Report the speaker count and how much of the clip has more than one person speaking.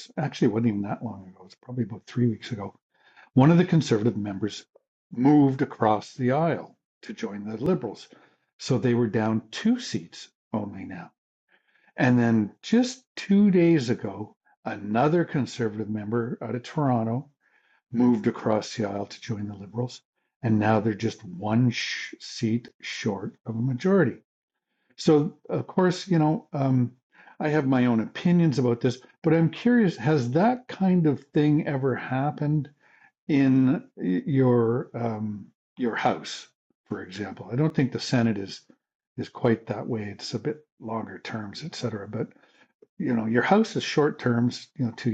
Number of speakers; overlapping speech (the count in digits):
1, no overlap